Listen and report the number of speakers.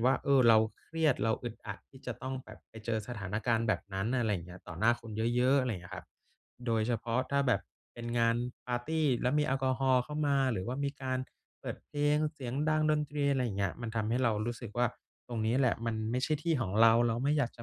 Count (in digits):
1